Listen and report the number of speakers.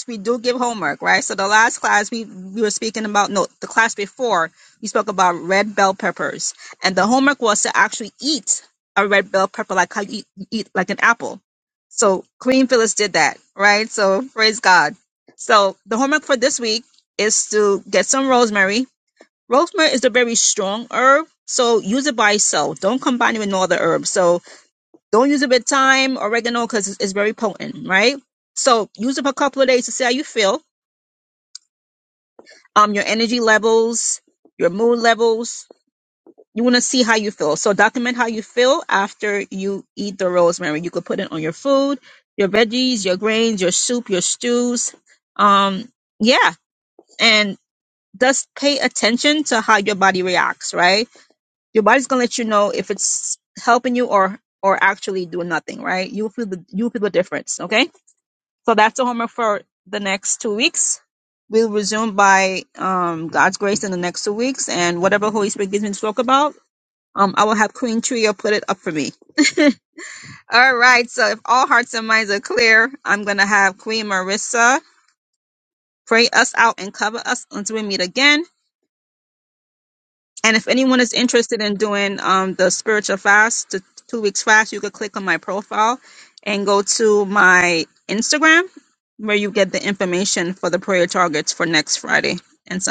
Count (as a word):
one